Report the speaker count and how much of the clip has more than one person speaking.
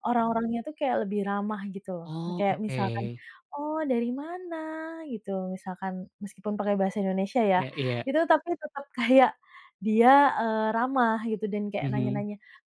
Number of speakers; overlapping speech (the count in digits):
2, about 9%